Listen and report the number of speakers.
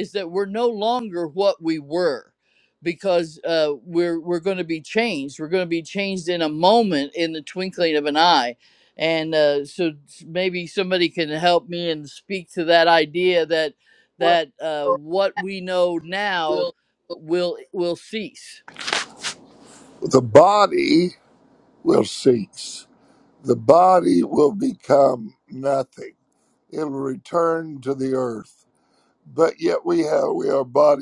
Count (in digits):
2